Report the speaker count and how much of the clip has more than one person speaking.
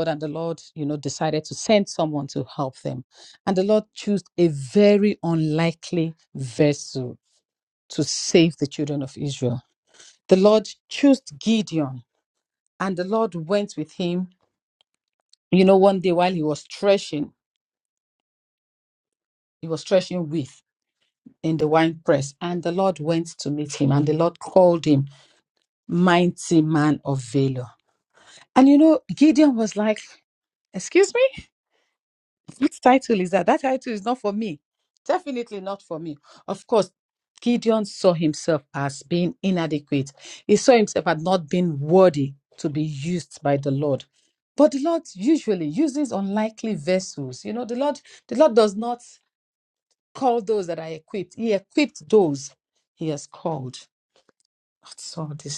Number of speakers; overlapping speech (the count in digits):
1, no overlap